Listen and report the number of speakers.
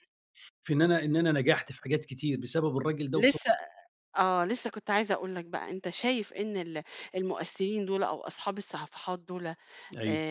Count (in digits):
2